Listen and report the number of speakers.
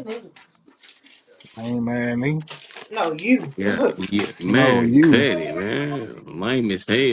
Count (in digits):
3